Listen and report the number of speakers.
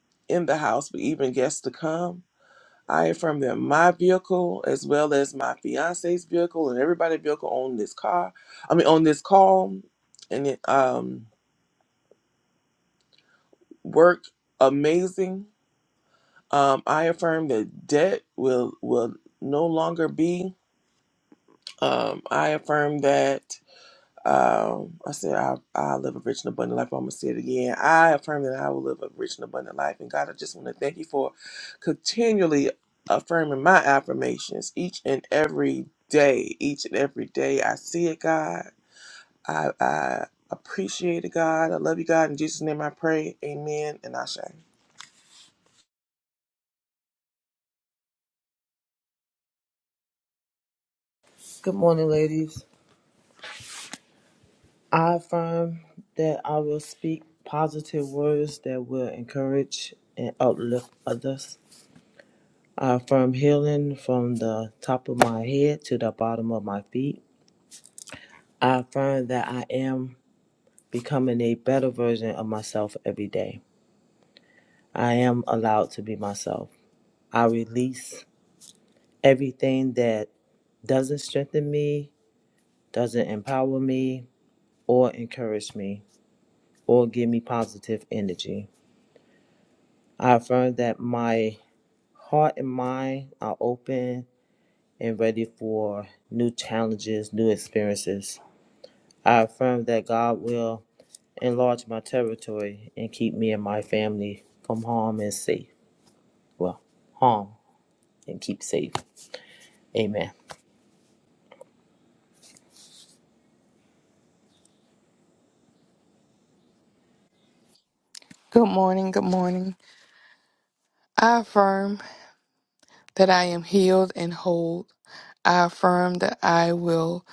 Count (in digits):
3